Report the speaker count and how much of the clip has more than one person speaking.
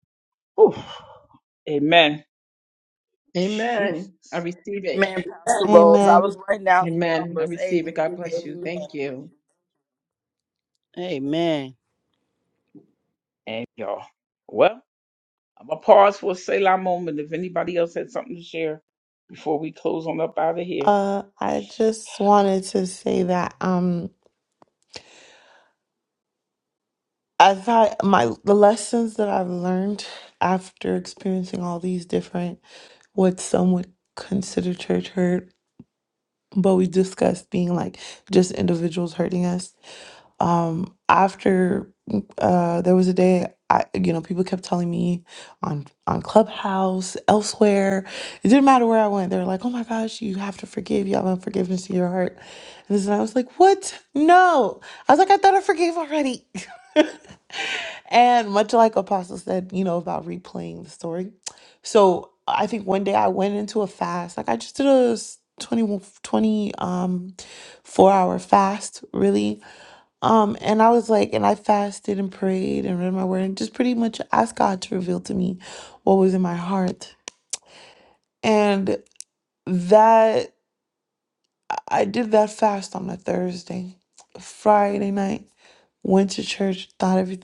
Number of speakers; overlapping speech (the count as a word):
four, about 3%